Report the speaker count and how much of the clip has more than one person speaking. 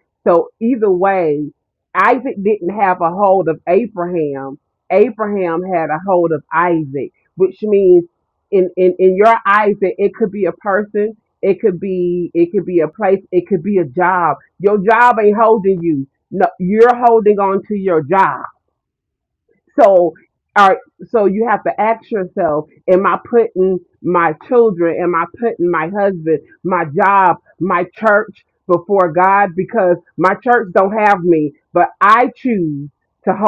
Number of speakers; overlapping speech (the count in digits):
1, no overlap